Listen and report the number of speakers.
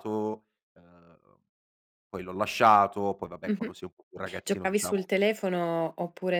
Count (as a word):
two